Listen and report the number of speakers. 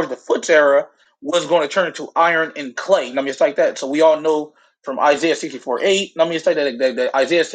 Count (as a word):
one